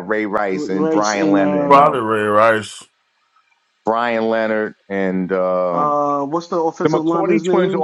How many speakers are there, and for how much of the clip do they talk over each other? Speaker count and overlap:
three, about 34%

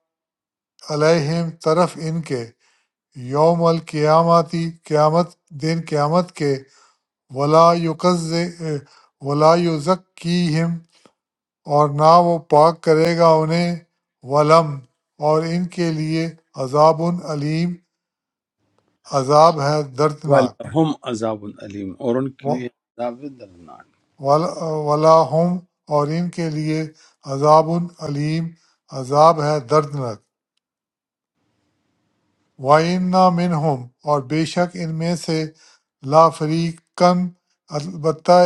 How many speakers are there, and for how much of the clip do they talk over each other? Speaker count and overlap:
two, about 1%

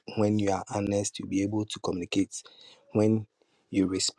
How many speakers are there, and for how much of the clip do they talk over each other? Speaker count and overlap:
one, no overlap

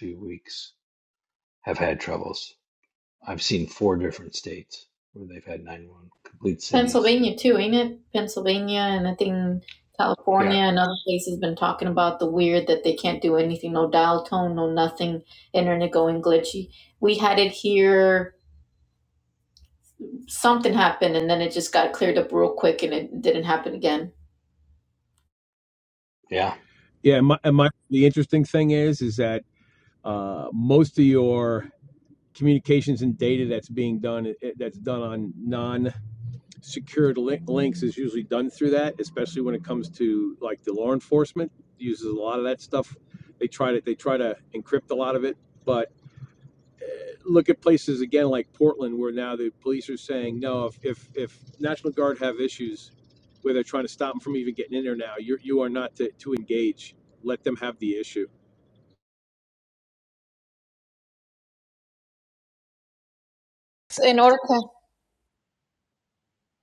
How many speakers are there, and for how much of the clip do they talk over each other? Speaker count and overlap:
three, about 1%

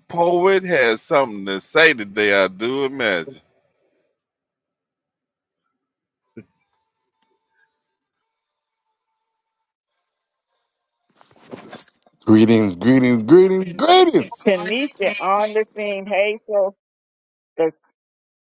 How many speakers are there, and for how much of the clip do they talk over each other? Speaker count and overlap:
three, no overlap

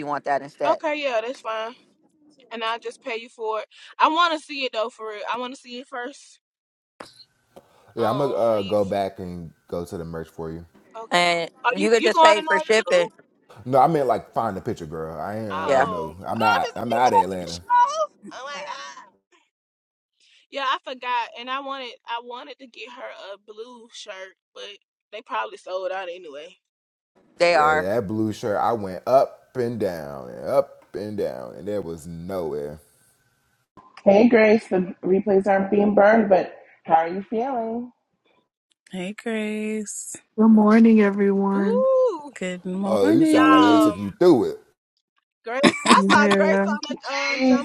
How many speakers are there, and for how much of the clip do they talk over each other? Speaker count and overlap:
six, about 16%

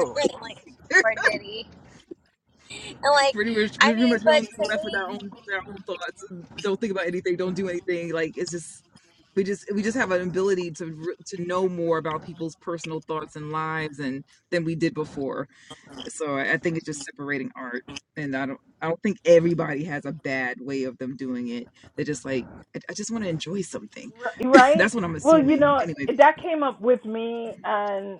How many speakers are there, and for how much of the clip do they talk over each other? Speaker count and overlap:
three, about 9%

